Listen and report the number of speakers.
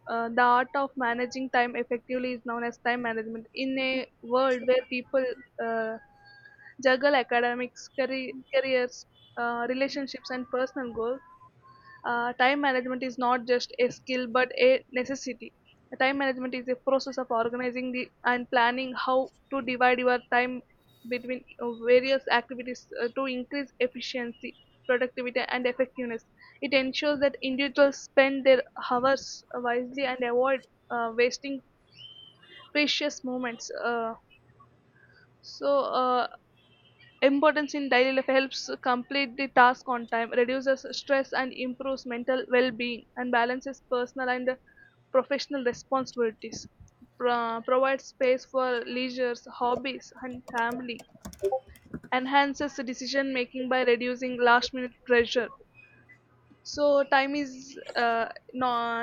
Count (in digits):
1